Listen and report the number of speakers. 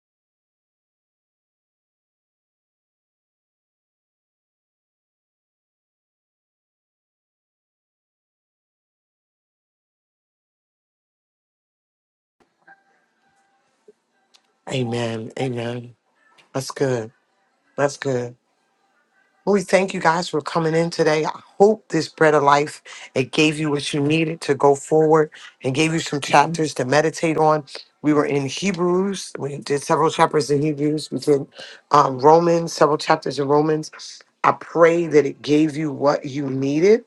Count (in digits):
1